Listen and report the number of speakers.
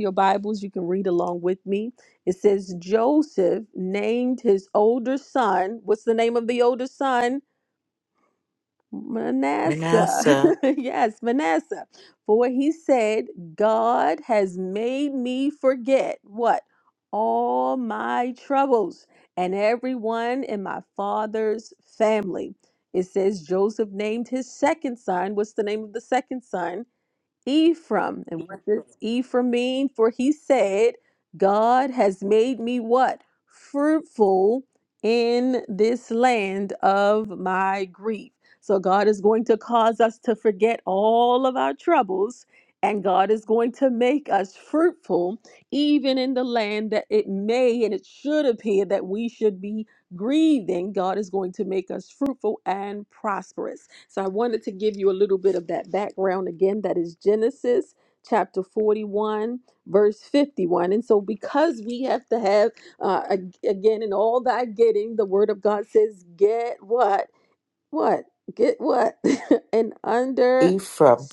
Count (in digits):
2